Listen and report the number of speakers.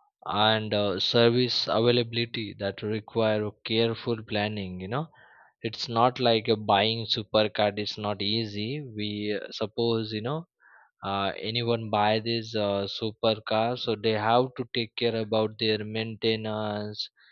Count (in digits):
1